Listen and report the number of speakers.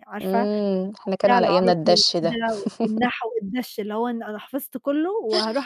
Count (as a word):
two